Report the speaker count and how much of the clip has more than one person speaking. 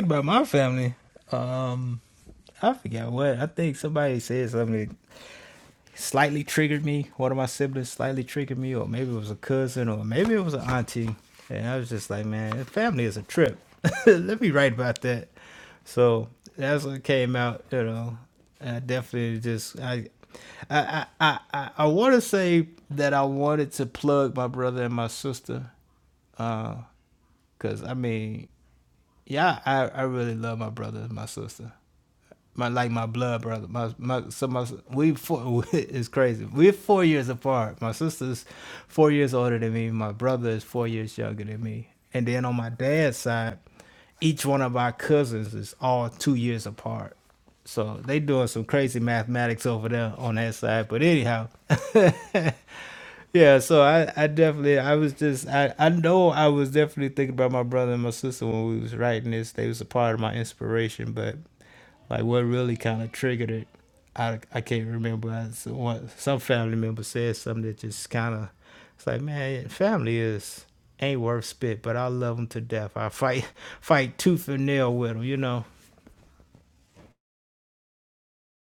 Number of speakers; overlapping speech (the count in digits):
1, no overlap